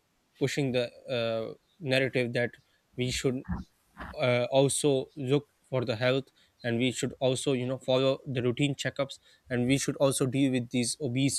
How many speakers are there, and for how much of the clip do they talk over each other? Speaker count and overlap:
one, no overlap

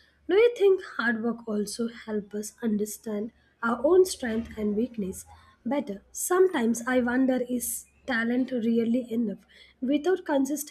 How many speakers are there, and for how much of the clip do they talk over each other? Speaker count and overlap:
one, no overlap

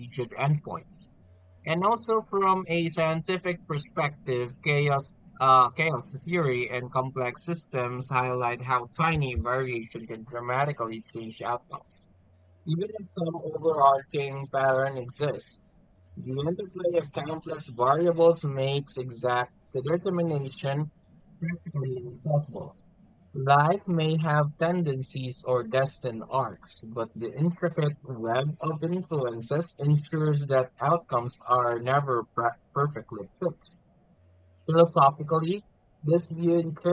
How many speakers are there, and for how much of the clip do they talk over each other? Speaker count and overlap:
one, no overlap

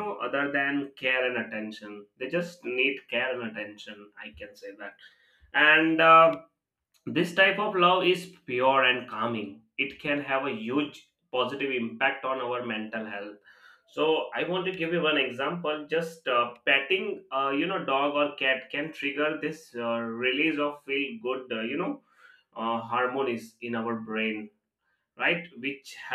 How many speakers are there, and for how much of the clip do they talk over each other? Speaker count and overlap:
one, no overlap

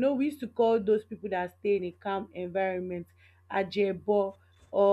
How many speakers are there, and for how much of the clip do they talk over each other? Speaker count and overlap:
one, no overlap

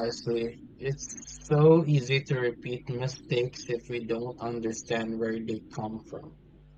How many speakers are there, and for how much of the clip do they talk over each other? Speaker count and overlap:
one, no overlap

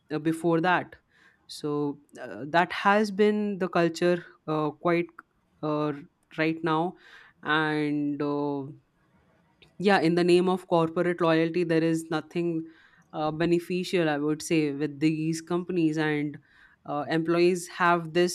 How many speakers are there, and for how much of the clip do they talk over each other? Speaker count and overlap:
one, no overlap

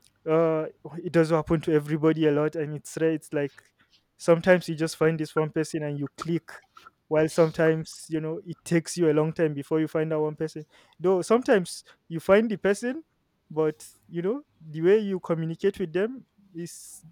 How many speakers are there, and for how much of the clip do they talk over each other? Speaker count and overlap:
one, no overlap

